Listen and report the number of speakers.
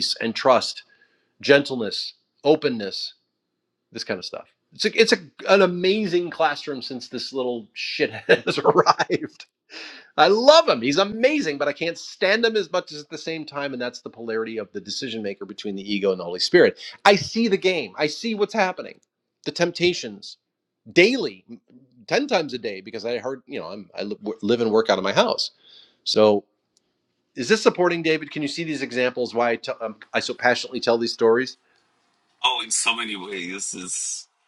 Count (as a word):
two